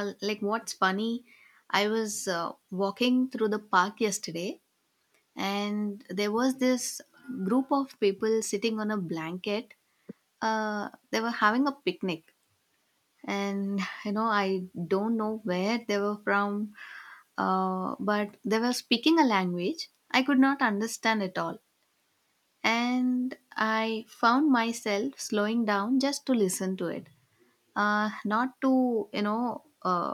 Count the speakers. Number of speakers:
1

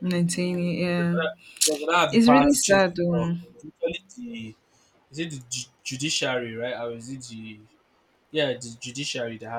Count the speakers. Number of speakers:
2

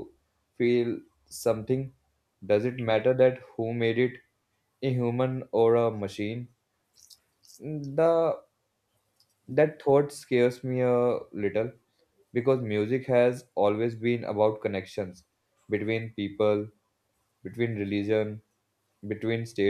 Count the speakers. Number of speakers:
1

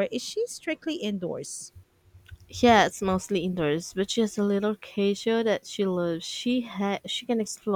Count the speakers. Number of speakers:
2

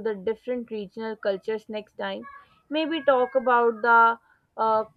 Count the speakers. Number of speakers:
1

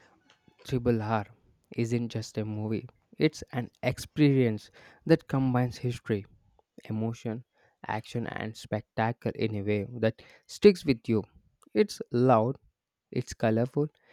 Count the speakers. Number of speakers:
1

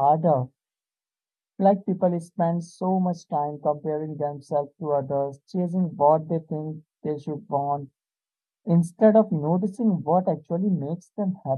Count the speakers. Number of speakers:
1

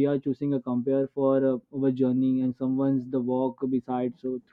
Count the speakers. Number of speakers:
1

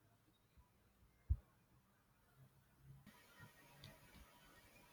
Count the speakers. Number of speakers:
0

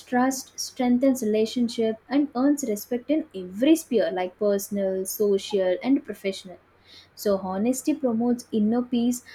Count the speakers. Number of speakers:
1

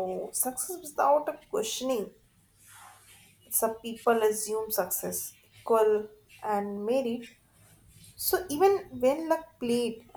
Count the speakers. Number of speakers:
1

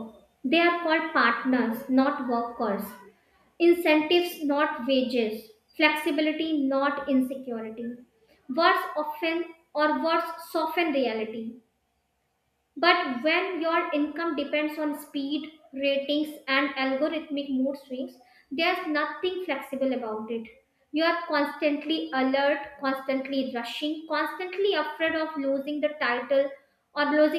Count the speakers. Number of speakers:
1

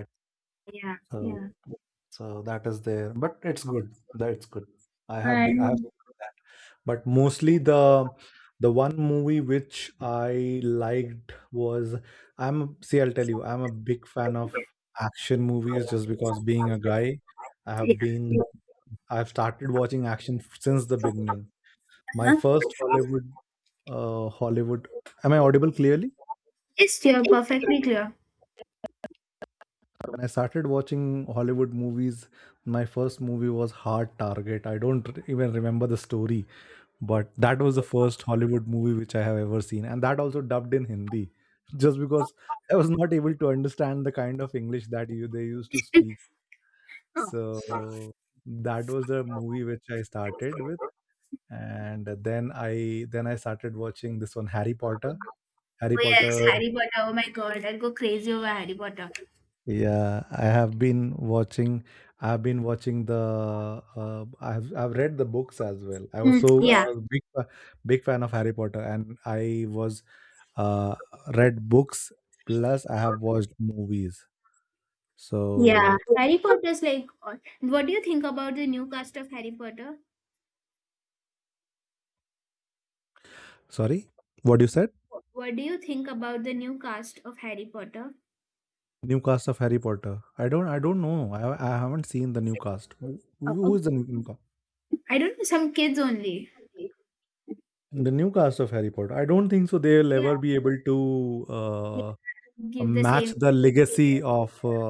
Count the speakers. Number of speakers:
2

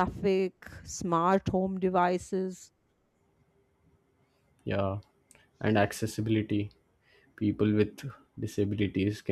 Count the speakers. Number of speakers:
2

